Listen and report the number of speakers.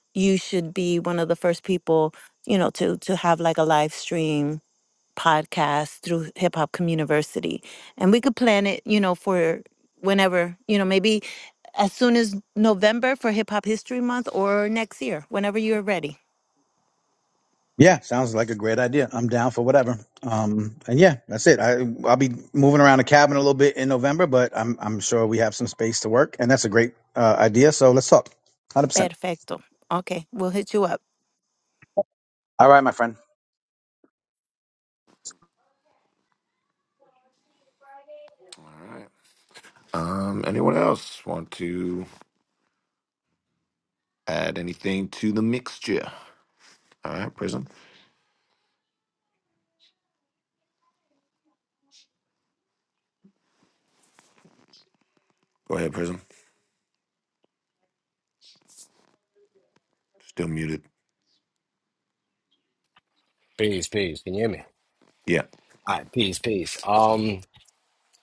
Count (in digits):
4